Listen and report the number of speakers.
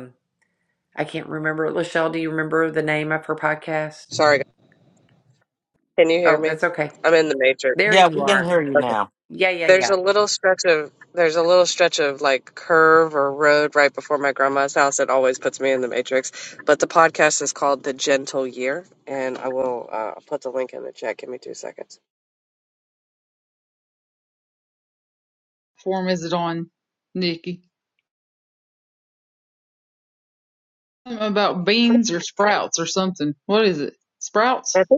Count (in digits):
4